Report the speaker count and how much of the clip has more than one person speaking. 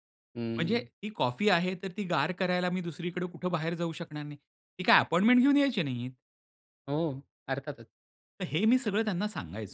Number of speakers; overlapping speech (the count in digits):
2, about 3%